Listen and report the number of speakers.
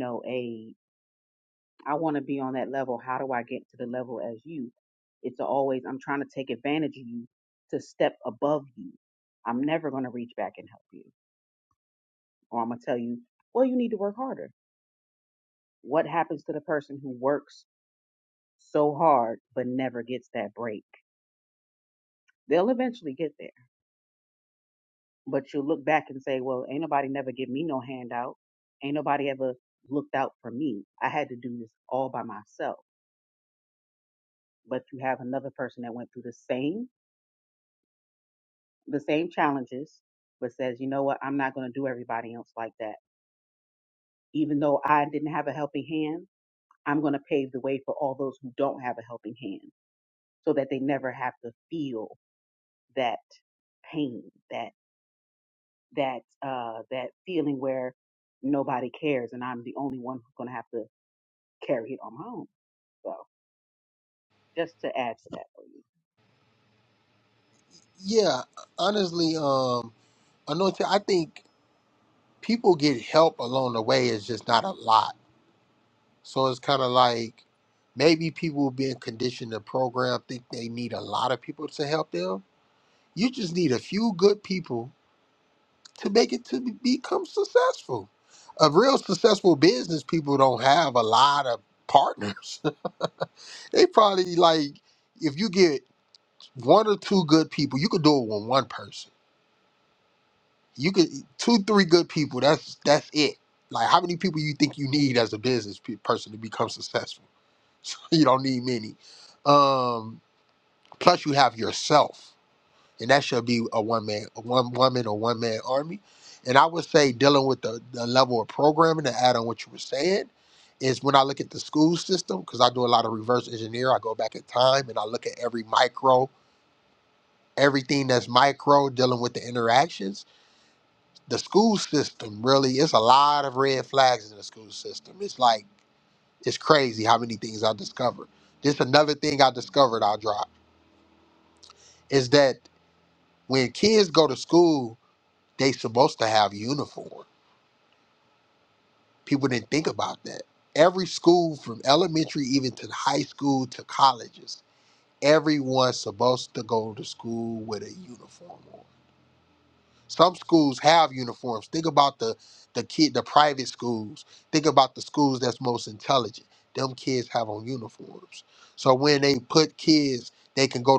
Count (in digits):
2